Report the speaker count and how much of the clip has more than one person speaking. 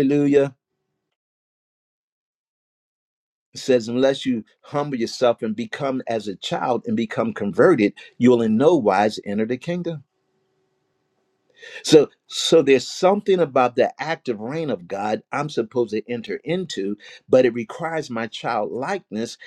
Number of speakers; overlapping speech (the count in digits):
1, no overlap